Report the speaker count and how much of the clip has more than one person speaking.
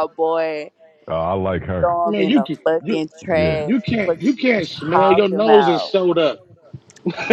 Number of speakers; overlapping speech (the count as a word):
three, about 39%